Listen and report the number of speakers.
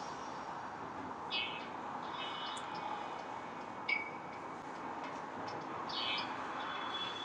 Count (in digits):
0